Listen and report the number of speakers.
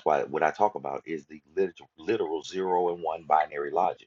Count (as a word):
one